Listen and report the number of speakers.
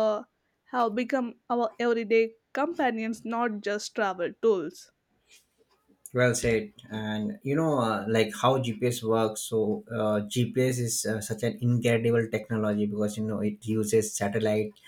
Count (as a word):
two